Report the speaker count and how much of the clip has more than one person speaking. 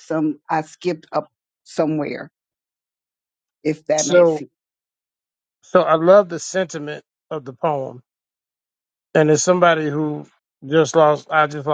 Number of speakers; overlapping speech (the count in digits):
2, about 4%